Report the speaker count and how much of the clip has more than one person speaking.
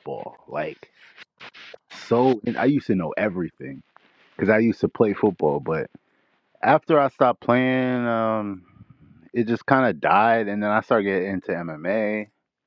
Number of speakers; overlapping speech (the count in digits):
1, no overlap